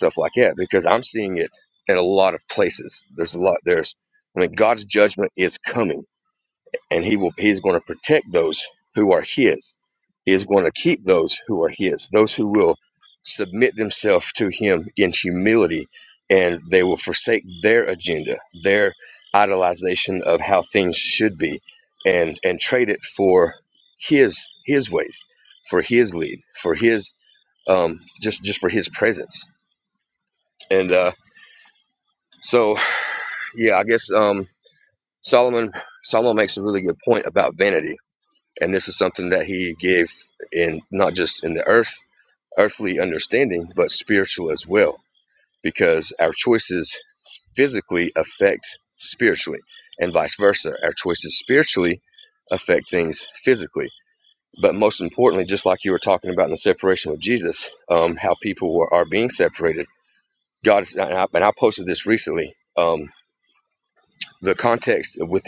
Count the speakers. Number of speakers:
1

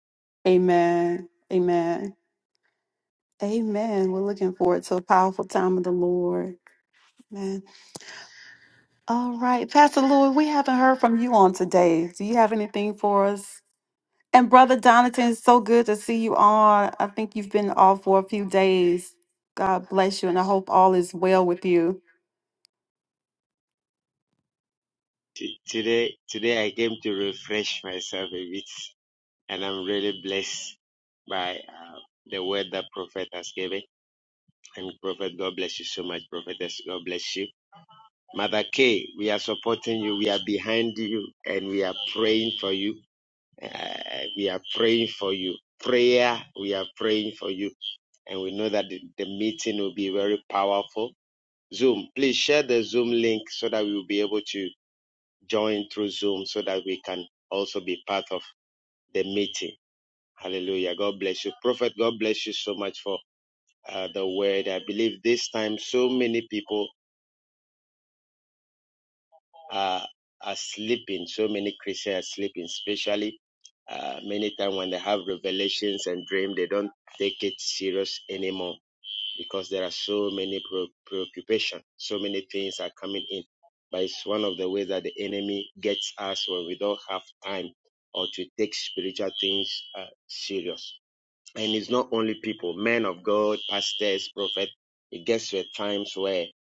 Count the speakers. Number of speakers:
2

